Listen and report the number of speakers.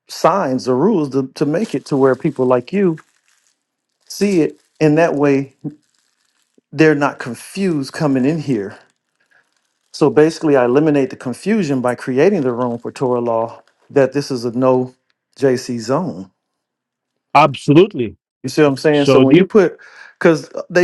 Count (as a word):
two